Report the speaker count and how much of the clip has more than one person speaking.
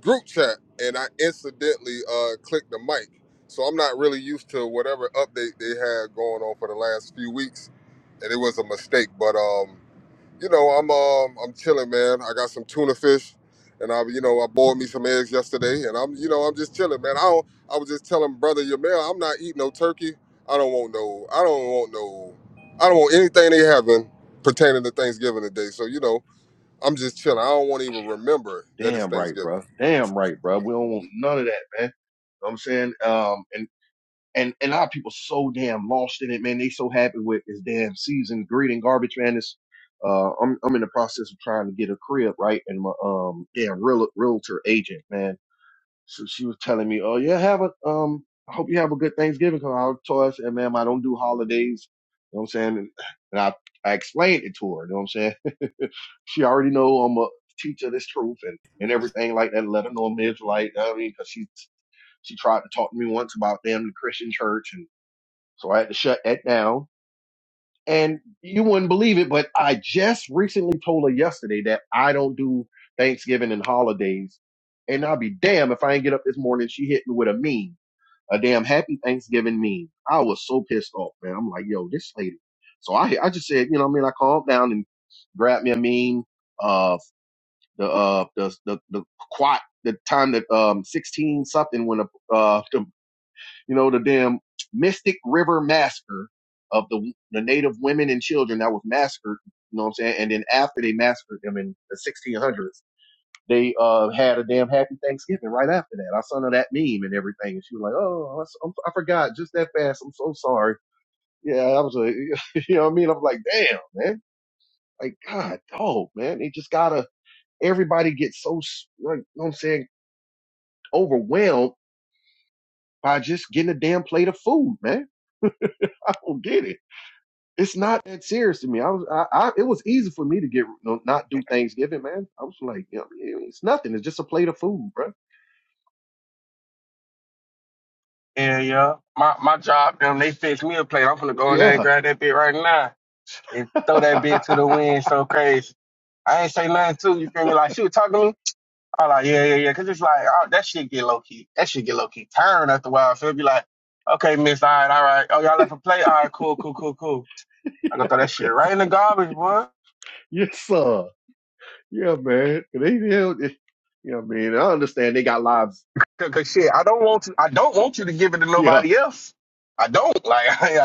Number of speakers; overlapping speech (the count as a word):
three, about 1%